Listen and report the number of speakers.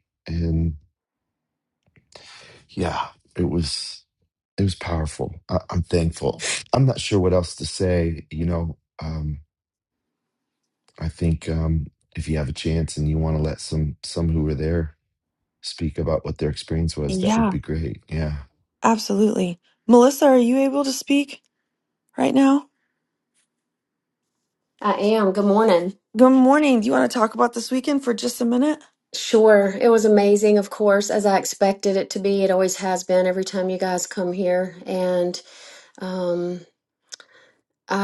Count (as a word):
three